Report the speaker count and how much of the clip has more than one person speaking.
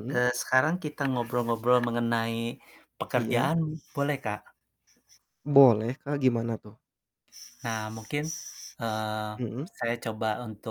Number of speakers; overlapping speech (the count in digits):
2, about 4%